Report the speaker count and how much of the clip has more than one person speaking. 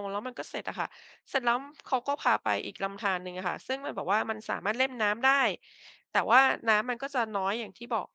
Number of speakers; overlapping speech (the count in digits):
1, no overlap